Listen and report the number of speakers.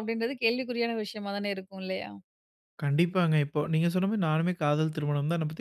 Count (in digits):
2